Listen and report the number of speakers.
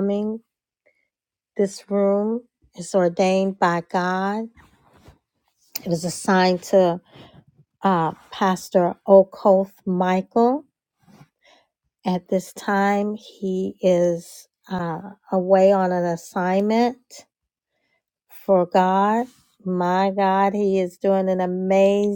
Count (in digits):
1